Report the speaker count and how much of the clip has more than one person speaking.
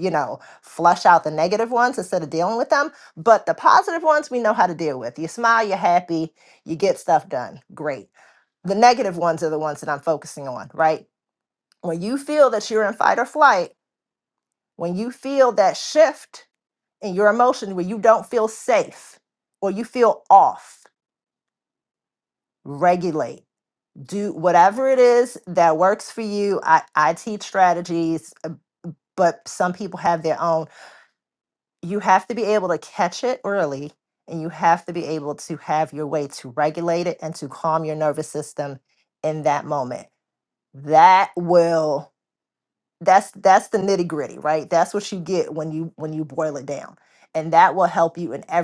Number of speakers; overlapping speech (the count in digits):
1, no overlap